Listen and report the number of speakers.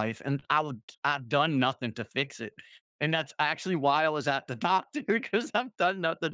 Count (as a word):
one